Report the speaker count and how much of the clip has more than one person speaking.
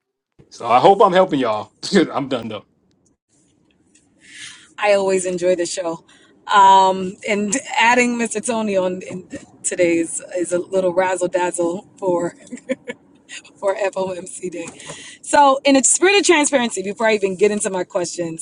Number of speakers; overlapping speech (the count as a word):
two, no overlap